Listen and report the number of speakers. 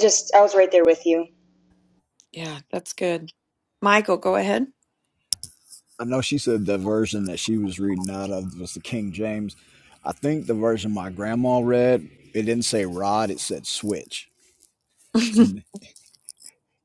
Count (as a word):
three